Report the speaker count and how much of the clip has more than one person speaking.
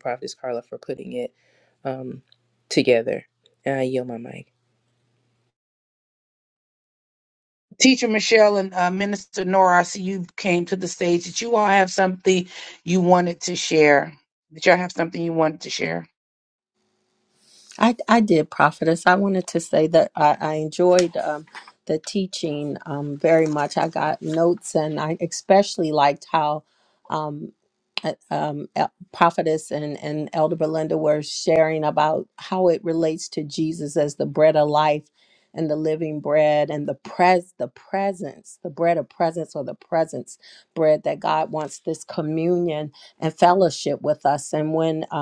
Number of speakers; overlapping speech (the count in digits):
3, no overlap